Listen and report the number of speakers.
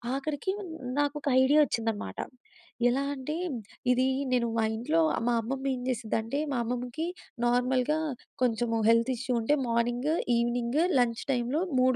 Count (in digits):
1